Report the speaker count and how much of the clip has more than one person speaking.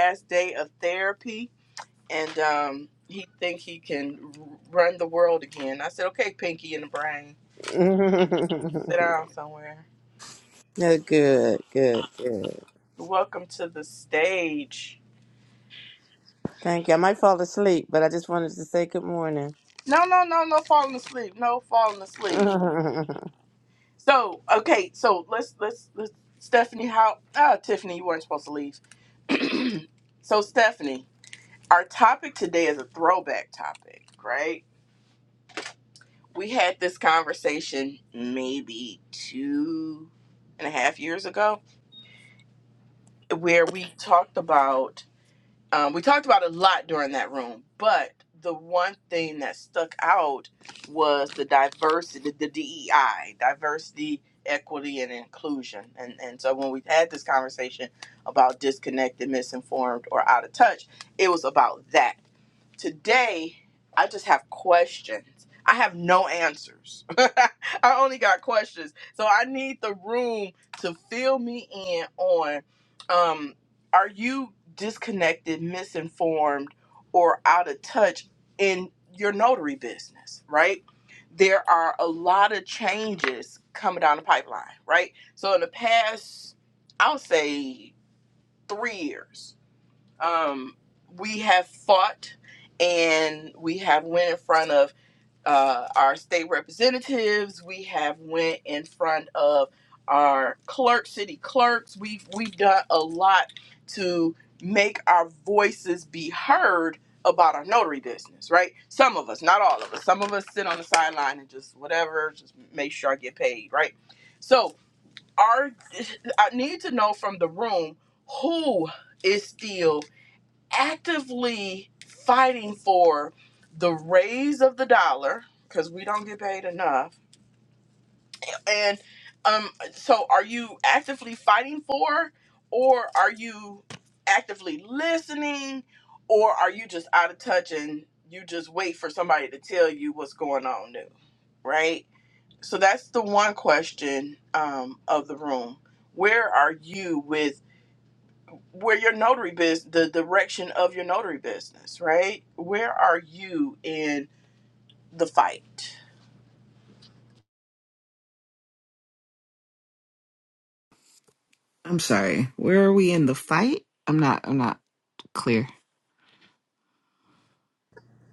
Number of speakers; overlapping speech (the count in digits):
3, under 1%